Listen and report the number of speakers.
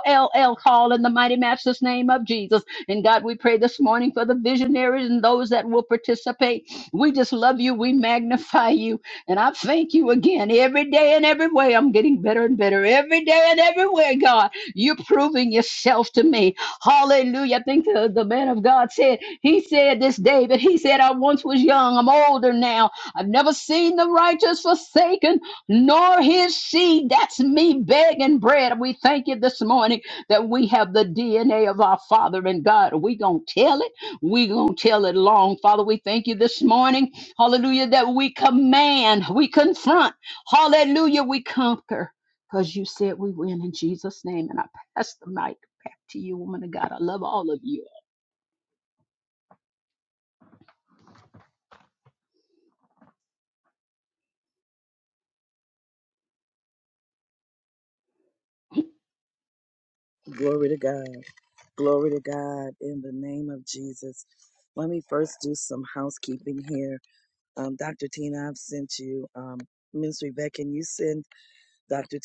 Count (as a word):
two